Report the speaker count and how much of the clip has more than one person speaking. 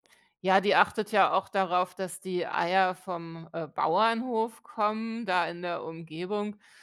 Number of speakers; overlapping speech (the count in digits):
1, no overlap